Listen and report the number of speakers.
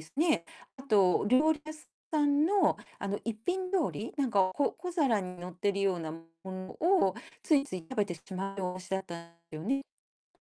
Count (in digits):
1